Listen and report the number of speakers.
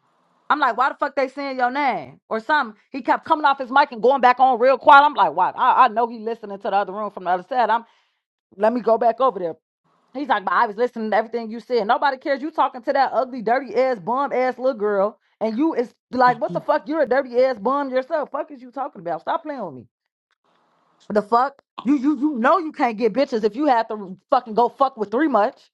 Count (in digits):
1